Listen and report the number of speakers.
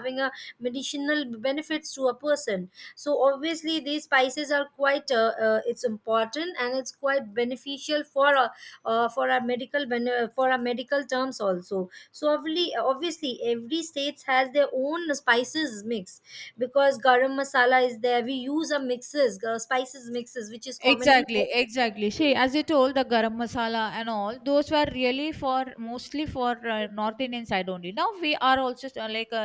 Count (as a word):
two